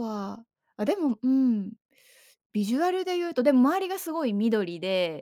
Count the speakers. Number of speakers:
1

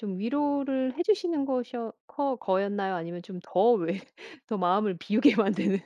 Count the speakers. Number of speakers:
1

